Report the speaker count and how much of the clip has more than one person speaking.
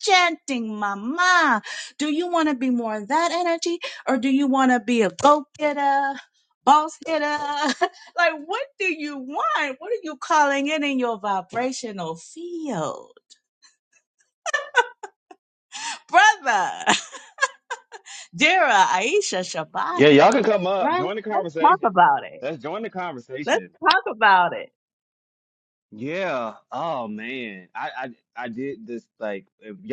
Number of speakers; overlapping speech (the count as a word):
two, about 6%